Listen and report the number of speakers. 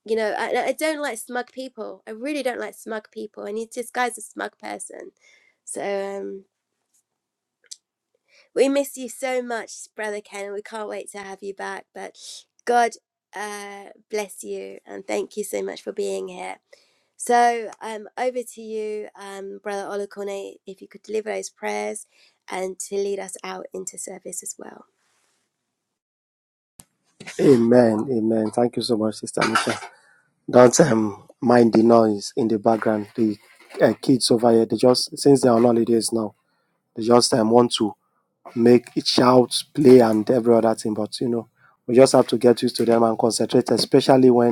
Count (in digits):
2